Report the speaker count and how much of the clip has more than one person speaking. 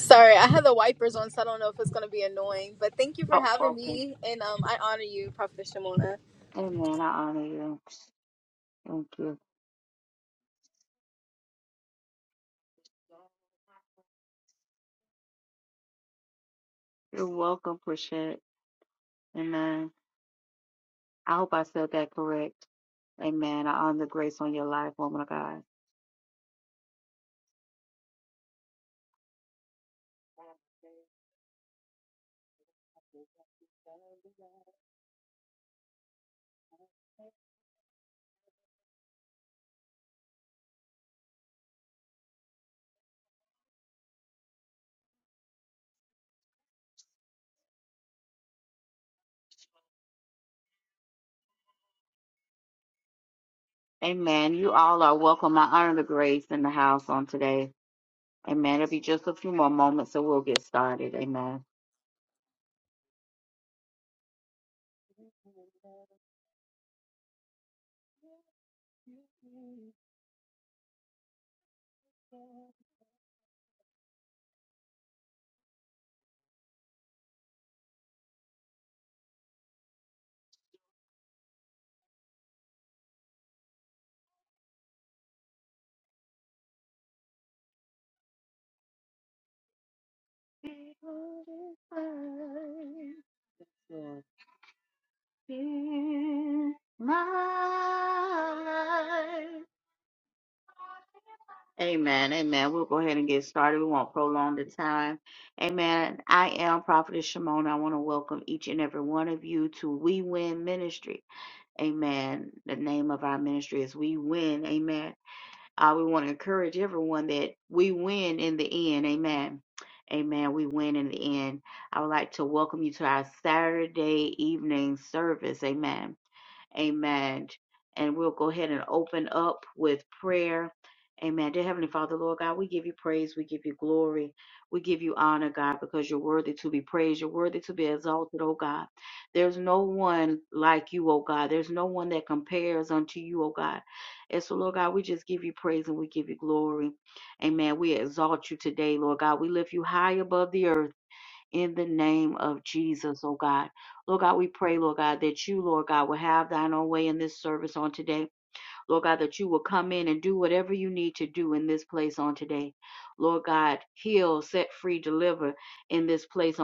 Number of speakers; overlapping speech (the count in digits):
2, under 1%